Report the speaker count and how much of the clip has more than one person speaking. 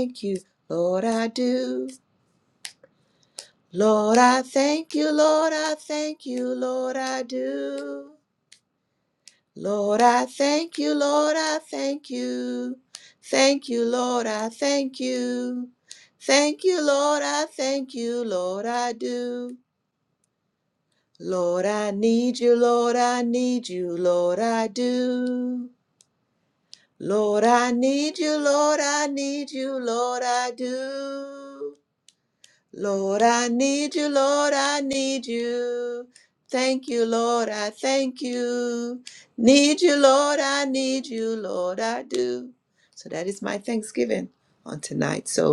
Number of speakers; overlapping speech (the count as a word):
one, no overlap